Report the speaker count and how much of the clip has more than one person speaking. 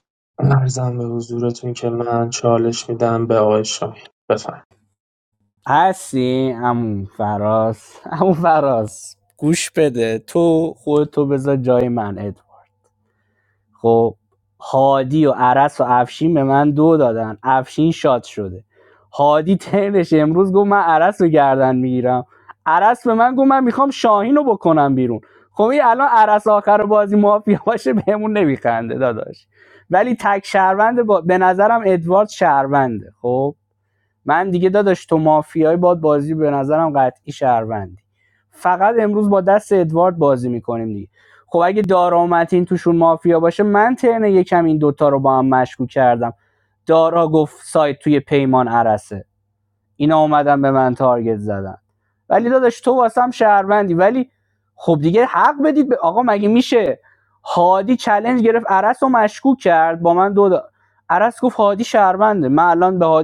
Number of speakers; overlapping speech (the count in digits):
2, no overlap